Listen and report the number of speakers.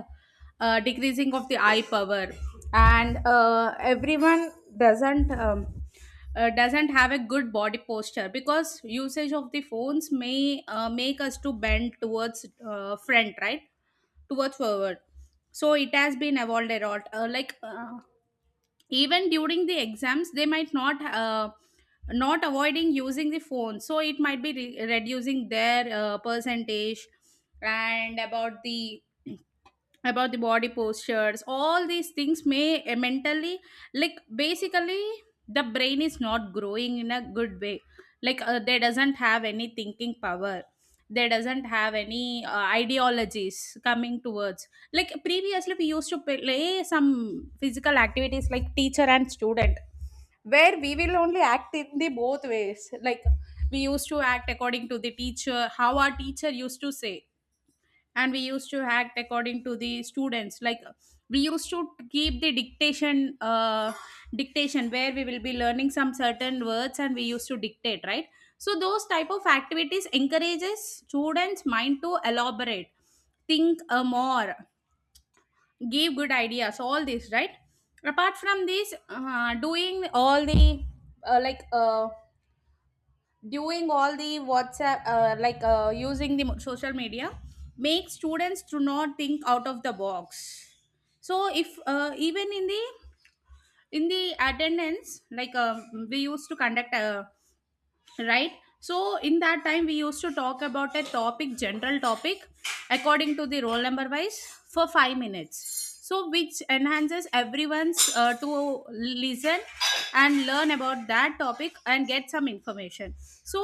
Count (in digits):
1